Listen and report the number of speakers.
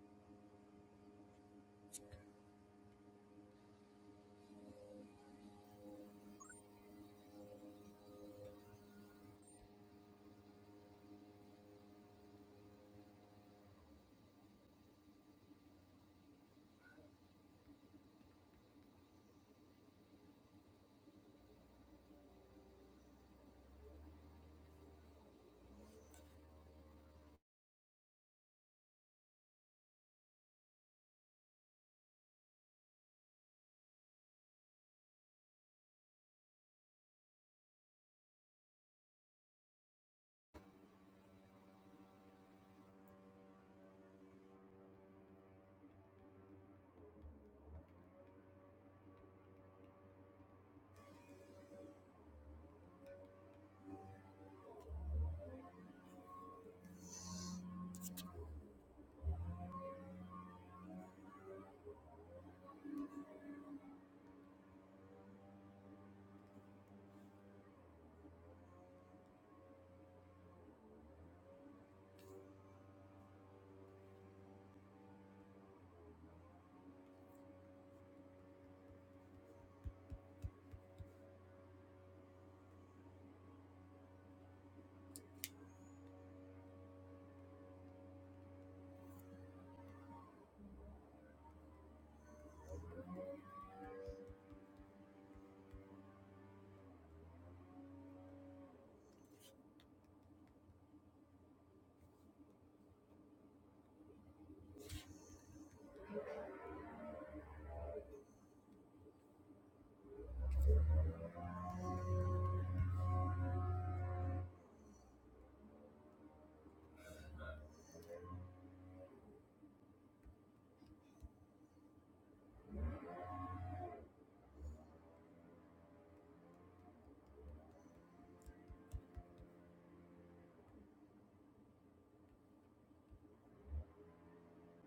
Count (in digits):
0